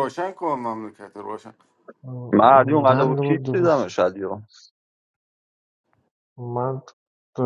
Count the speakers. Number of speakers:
3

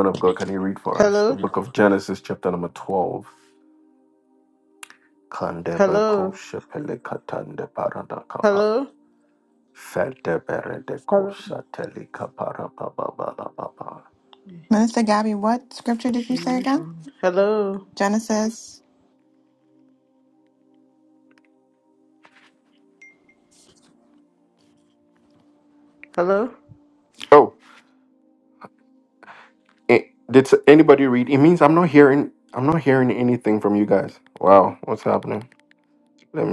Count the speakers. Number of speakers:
3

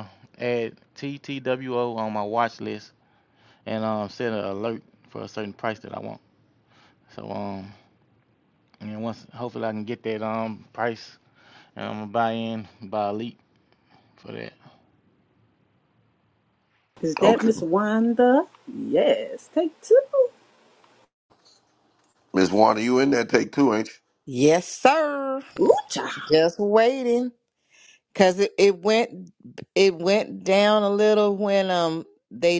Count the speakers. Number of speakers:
4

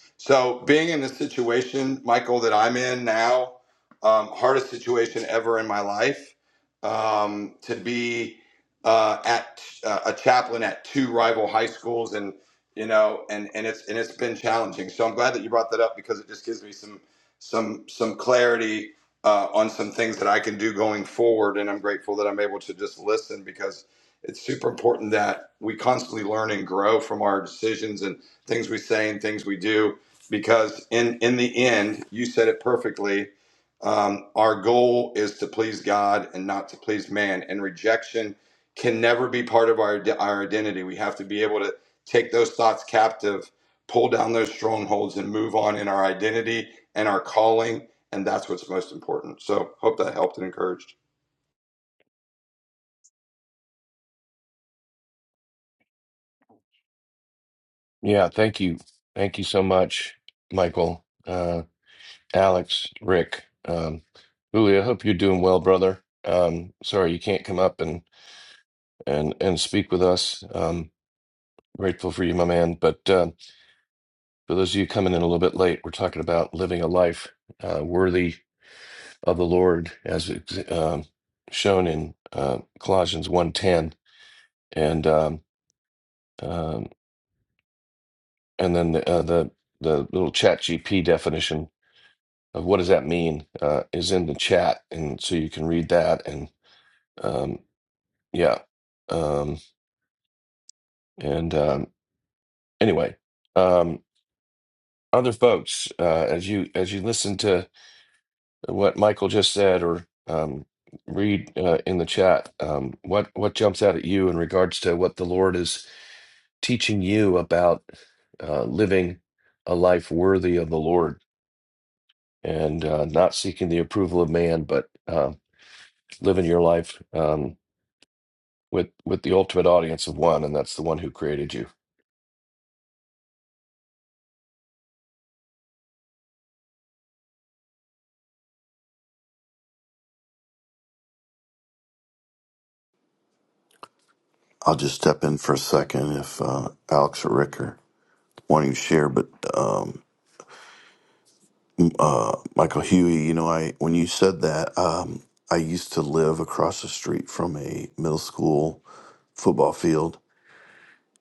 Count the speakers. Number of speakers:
3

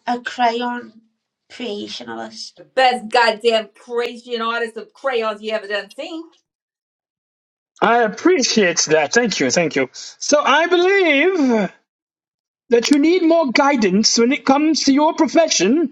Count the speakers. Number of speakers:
3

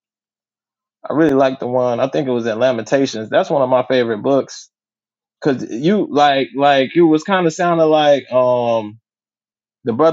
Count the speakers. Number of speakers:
1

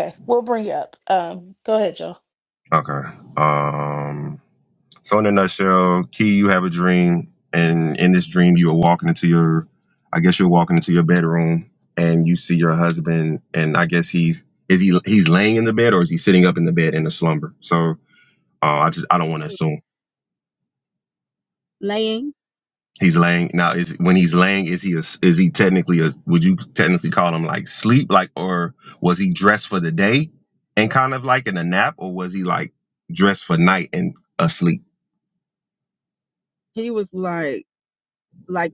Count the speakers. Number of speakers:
3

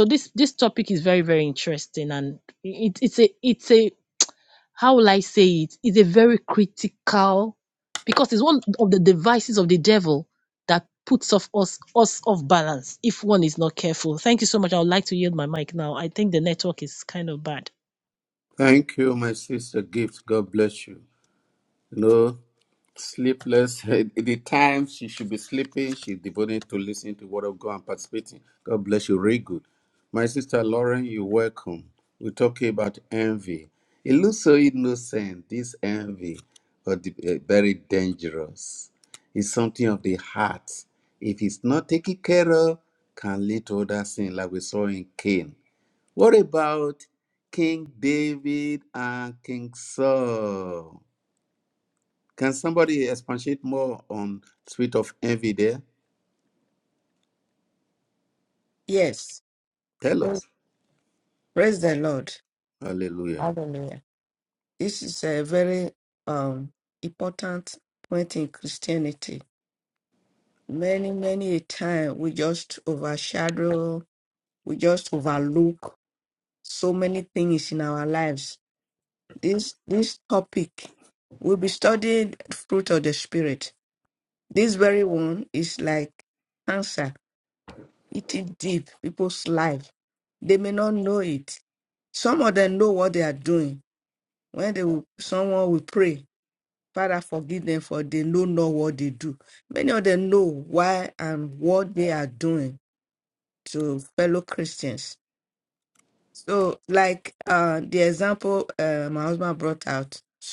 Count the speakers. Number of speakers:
3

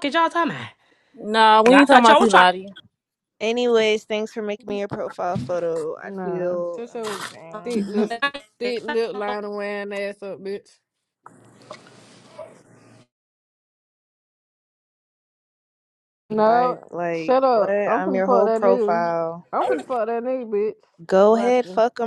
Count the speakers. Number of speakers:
4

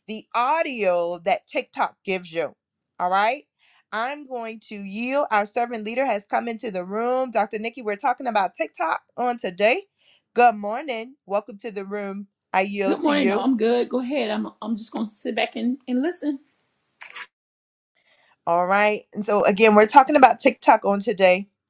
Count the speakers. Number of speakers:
2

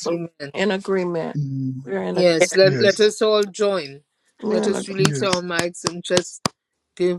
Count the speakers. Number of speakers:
3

